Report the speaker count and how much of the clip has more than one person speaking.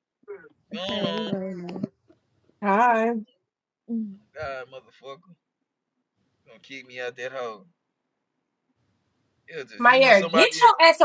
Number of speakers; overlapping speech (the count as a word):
three, about 13%